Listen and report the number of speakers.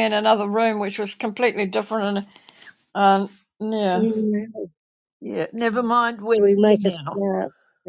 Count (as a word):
three